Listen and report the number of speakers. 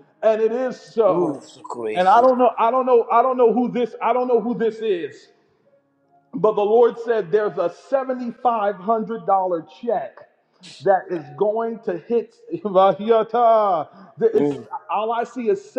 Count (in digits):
2